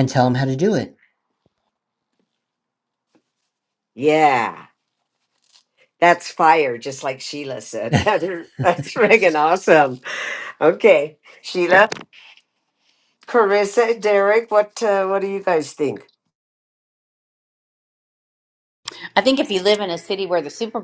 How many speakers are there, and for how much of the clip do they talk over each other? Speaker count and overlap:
3, about 1%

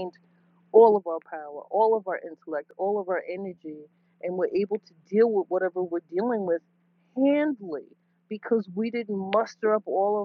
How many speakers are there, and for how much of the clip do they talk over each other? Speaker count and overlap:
1, no overlap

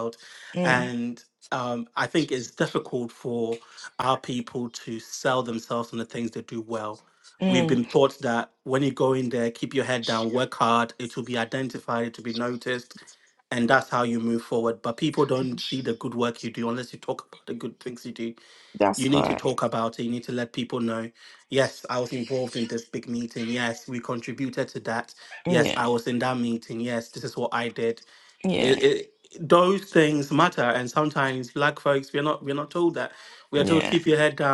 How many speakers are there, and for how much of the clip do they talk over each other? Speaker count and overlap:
2, about 6%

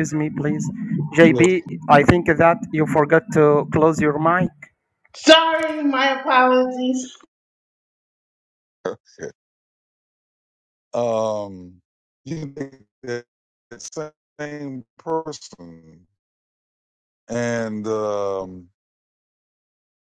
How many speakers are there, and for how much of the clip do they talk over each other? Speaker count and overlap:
3, about 1%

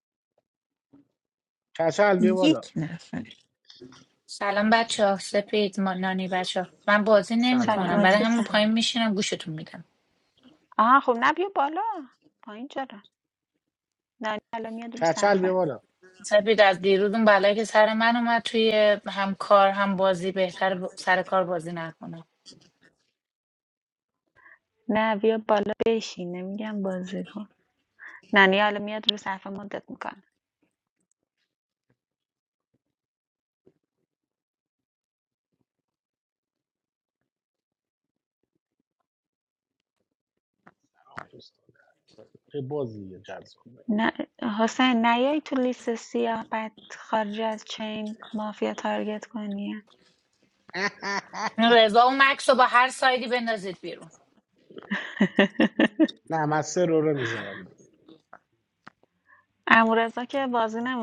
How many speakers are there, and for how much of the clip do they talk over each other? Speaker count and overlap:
4, about 3%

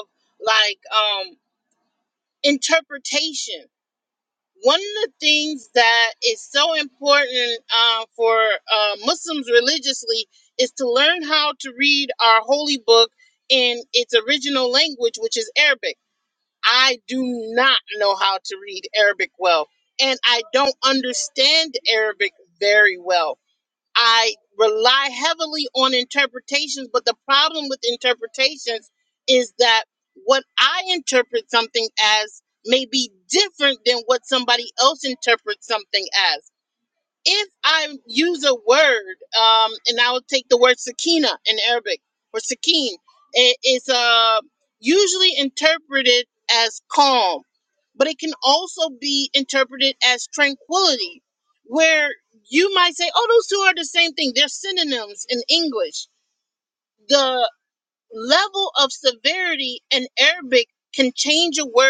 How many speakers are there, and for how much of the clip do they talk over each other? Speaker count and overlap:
1, no overlap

